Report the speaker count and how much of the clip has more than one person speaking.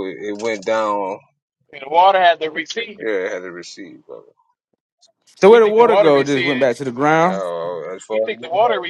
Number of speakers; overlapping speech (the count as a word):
three, about 22%